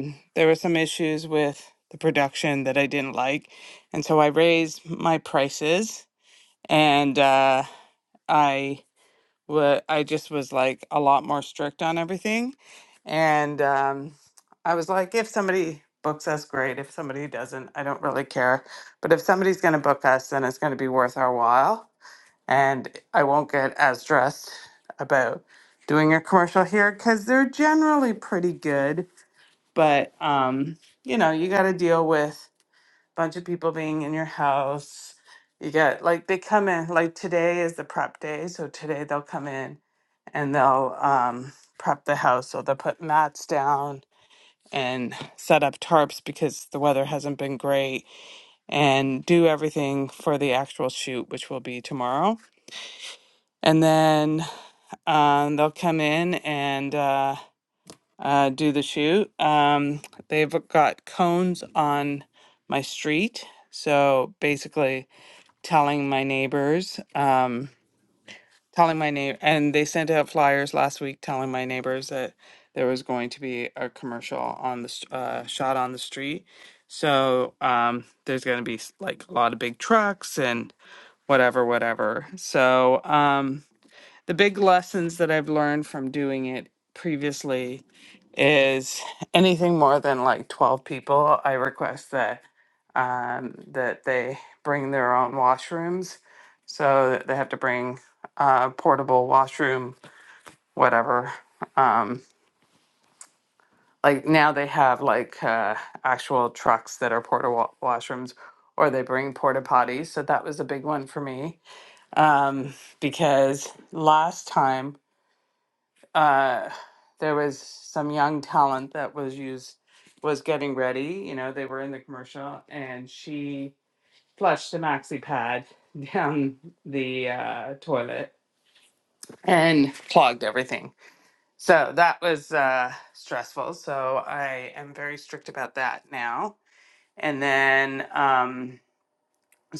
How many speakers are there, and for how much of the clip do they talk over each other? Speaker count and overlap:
1, no overlap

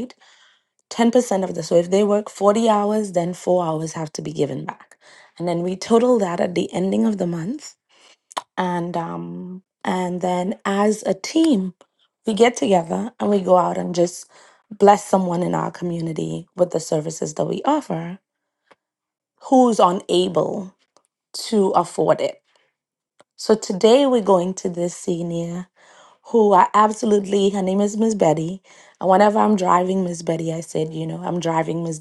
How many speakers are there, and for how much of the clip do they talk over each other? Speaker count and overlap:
1, no overlap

